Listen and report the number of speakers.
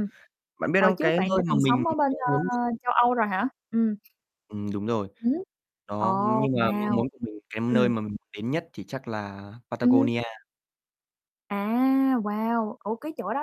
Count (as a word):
two